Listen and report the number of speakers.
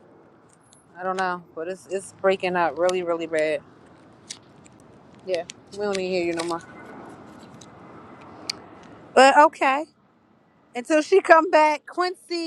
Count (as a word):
one